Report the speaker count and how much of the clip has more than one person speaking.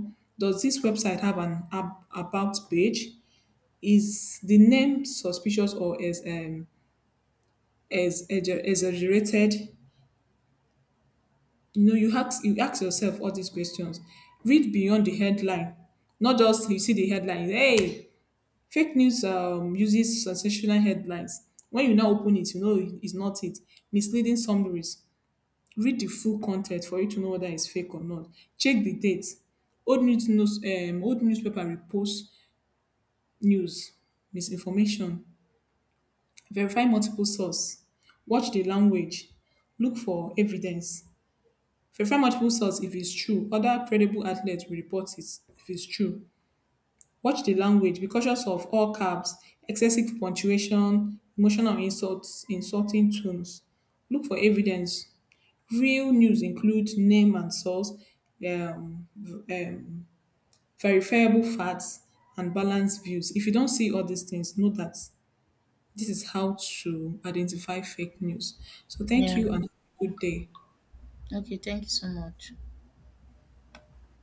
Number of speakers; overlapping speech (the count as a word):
two, under 1%